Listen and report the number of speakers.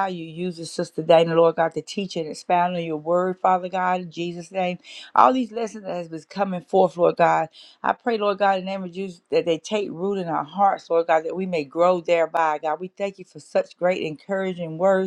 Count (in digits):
1